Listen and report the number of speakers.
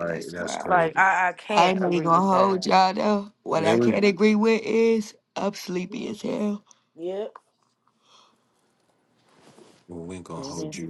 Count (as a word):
three